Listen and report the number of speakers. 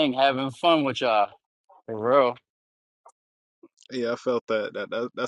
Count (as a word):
two